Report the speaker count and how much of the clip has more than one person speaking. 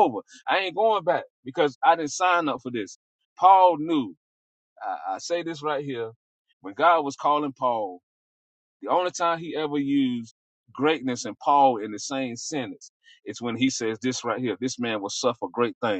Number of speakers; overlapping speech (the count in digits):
1, no overlap